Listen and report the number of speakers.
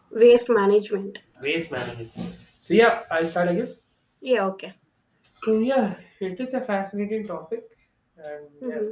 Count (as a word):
two